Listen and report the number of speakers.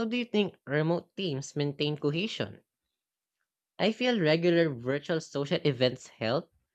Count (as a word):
one